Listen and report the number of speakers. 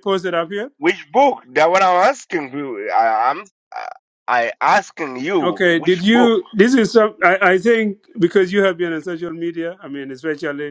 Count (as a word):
two